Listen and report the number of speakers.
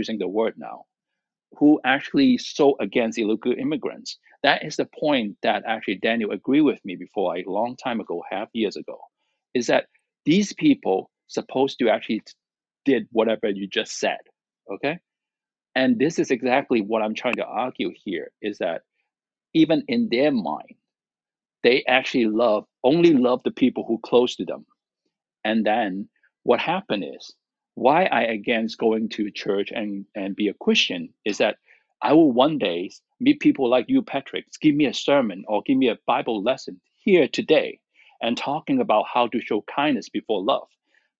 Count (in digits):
1